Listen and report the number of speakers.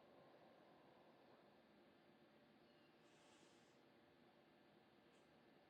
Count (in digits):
0